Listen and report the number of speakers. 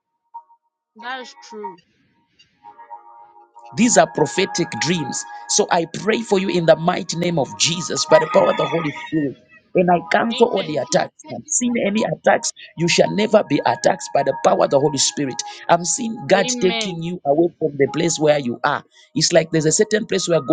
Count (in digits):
2